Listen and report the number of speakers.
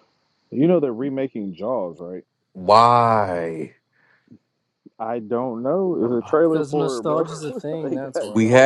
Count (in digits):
3